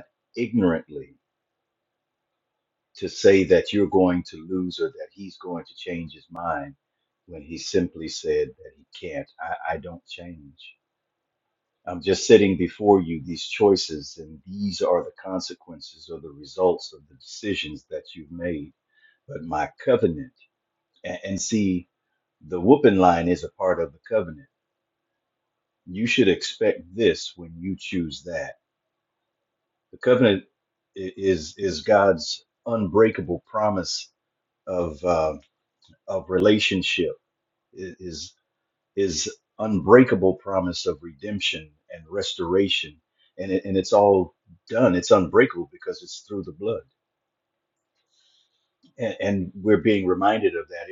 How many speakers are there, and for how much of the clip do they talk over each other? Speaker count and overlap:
1, no overlap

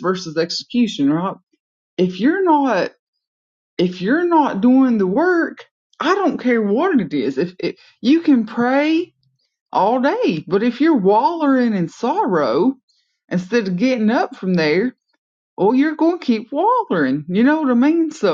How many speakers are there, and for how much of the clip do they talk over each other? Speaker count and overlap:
1, no overlap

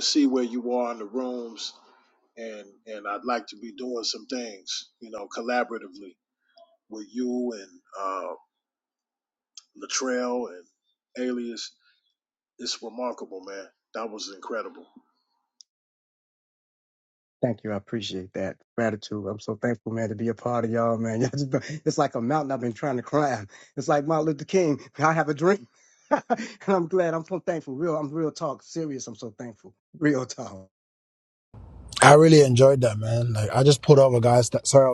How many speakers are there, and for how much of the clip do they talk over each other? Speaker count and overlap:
3, no overlap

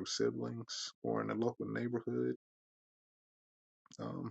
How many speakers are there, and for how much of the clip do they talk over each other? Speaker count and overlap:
1, no overlap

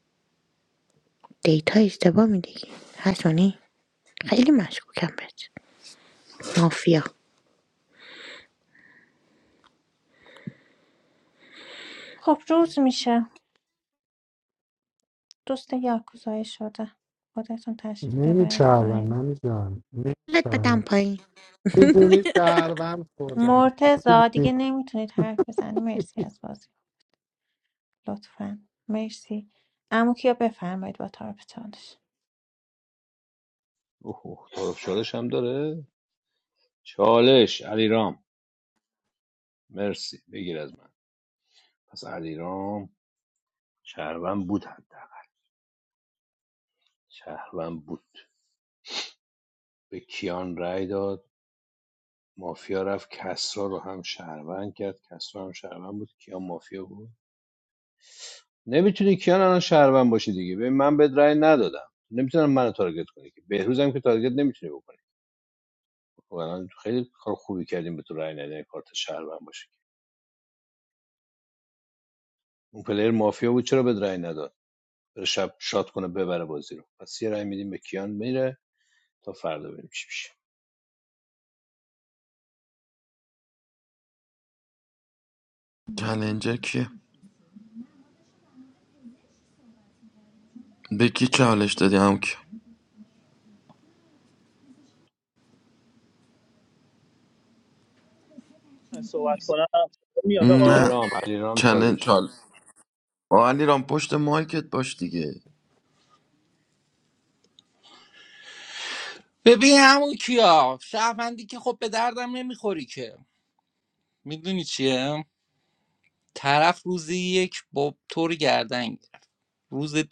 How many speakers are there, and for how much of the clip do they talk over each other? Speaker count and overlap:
7, about 3%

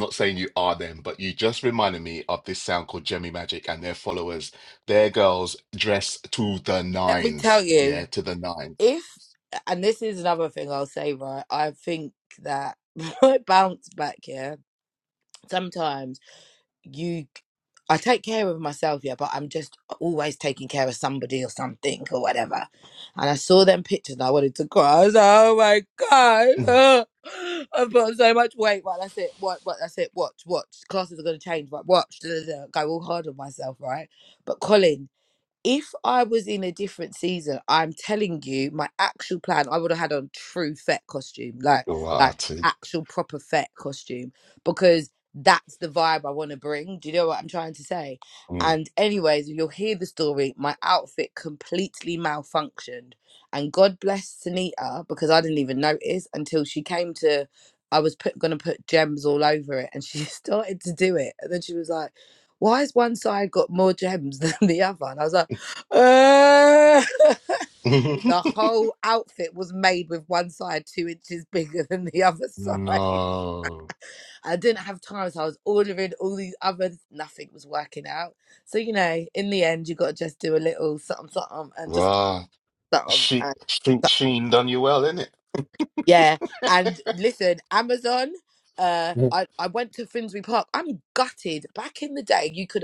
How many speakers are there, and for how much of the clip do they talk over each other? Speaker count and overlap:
2, about 3%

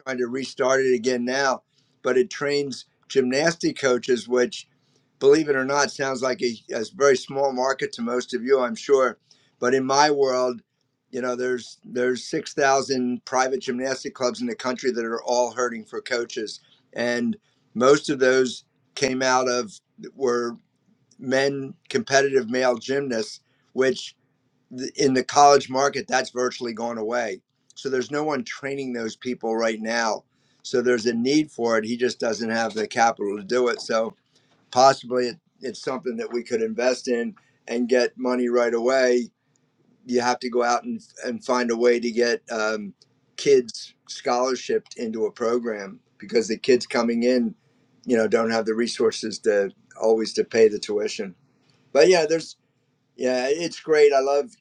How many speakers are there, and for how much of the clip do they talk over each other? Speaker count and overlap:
1, no overlap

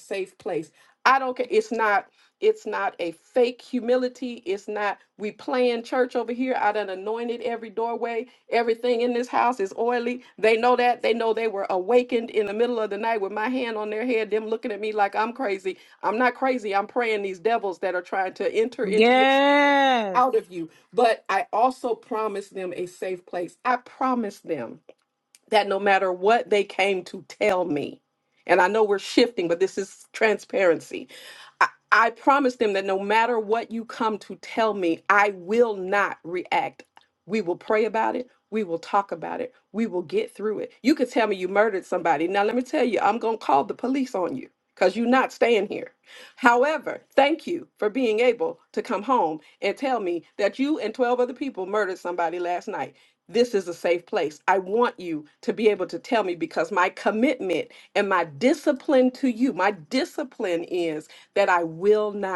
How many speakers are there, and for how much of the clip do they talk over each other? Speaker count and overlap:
2, about 1%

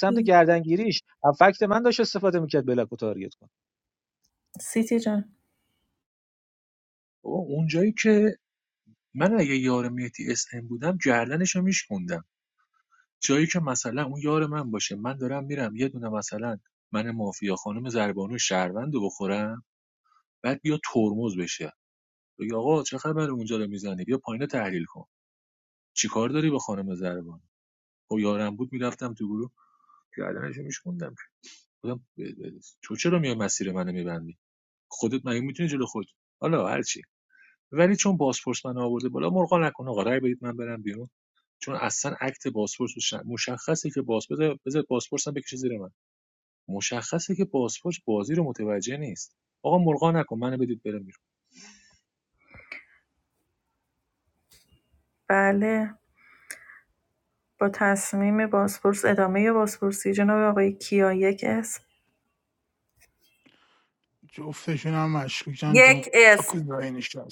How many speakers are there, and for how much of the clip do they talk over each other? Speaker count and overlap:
4, about 2%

